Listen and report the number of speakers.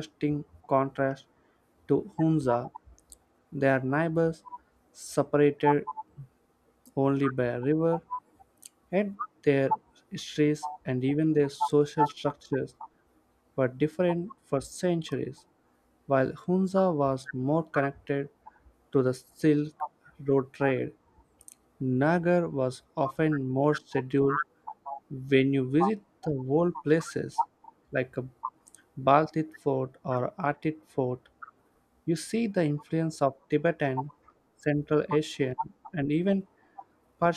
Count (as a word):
one